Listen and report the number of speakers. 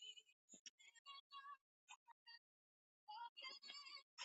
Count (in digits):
0